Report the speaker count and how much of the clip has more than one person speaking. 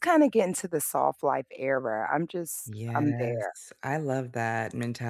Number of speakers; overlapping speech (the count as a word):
two, about 10%